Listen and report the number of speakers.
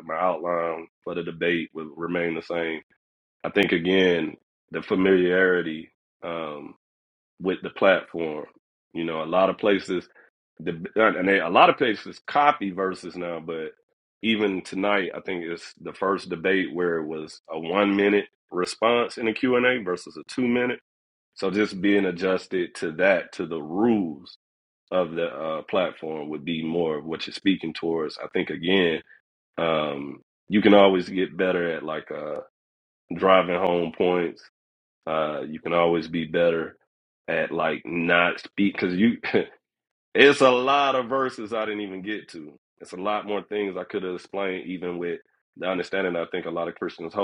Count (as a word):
one